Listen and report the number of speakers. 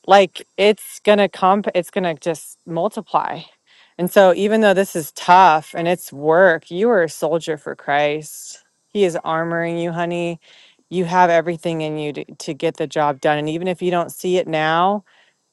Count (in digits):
1